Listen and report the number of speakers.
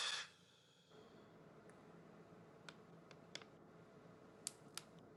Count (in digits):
0